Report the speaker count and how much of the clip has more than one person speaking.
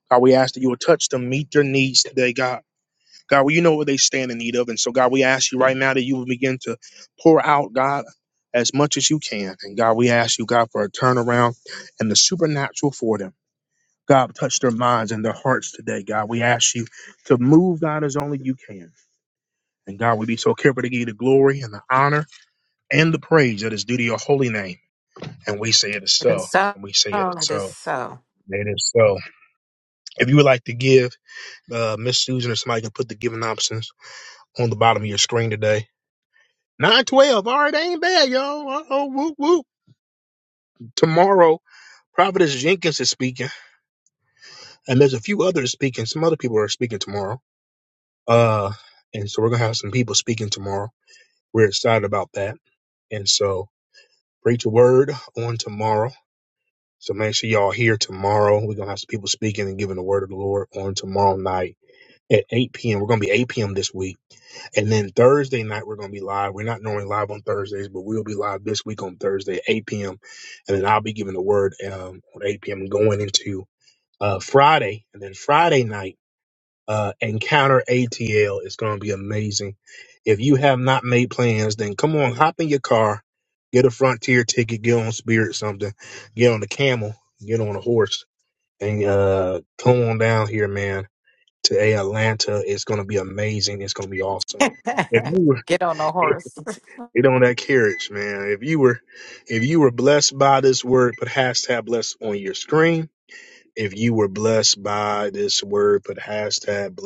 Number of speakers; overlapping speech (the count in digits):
2, about 1%